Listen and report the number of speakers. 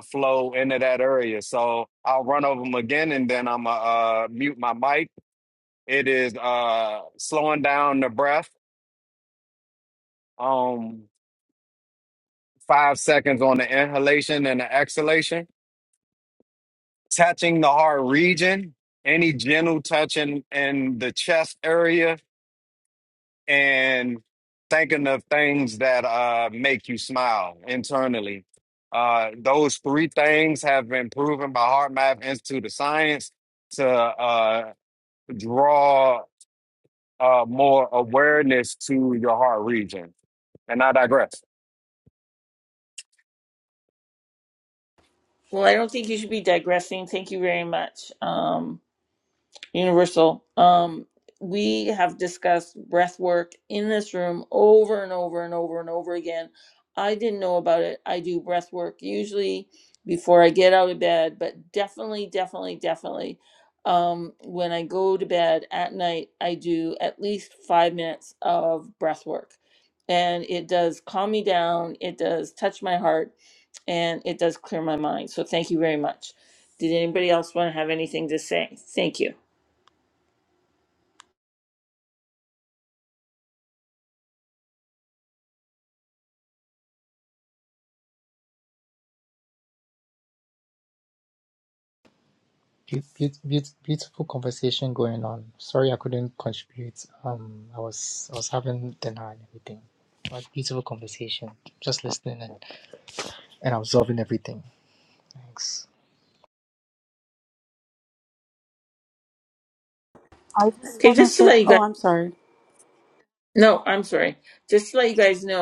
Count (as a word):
four